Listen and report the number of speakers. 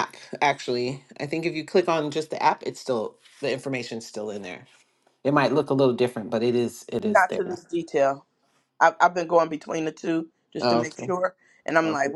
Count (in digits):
2